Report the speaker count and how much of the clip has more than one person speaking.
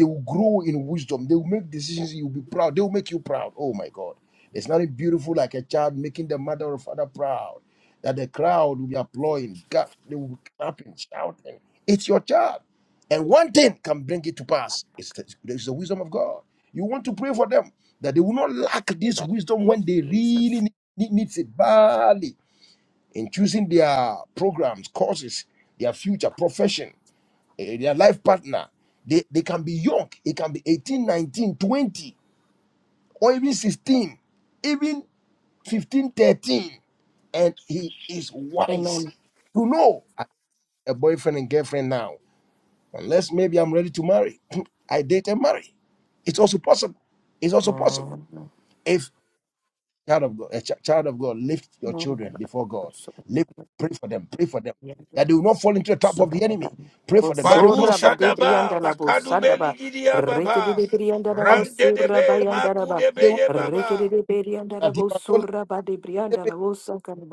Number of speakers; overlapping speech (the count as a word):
three, about 10%